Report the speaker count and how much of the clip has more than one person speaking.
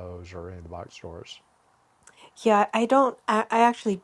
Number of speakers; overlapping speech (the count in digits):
2, no overlap